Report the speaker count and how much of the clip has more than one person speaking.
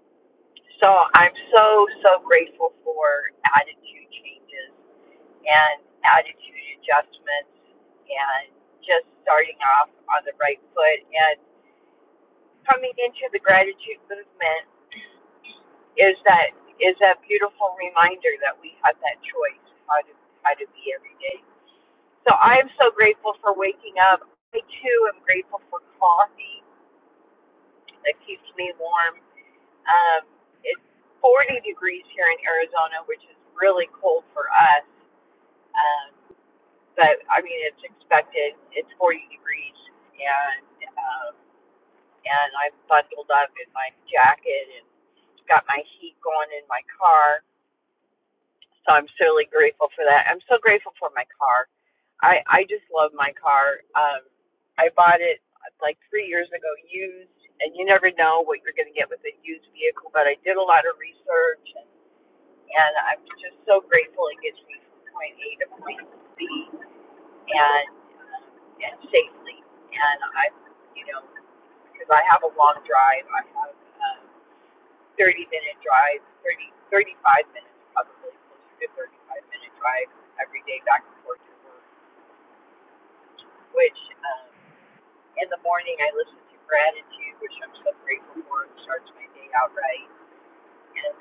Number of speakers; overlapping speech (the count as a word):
one, no overlap